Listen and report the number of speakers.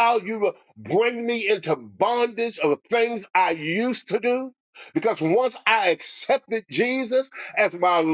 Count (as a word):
one